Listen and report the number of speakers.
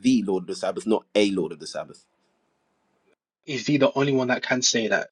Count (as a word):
two